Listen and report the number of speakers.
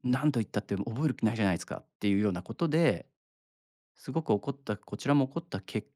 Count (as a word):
one